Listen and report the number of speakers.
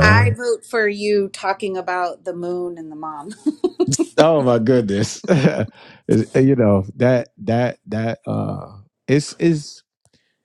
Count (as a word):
two